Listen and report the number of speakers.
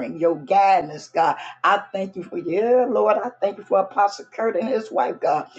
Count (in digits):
1